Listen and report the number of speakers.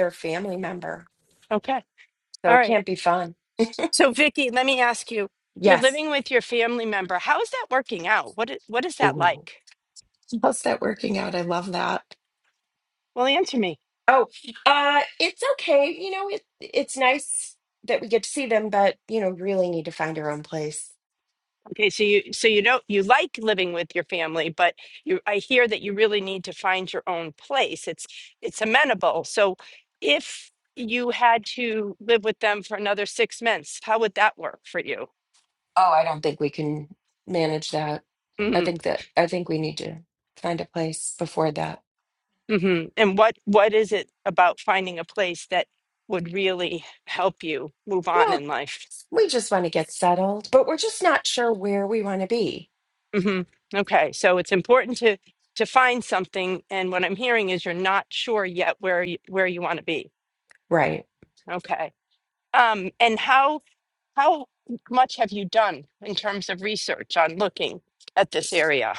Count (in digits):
2